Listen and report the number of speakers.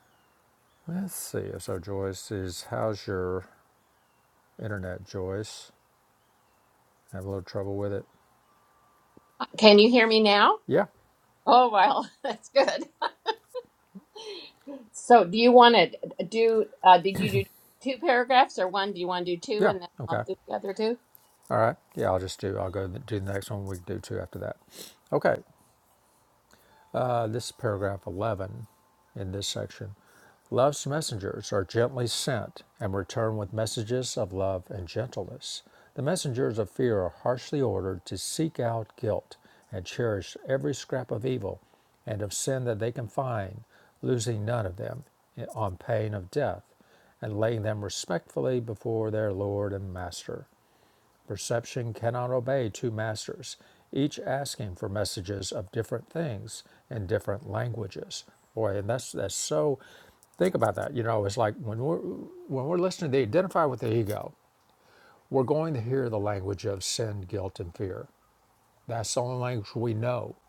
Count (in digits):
2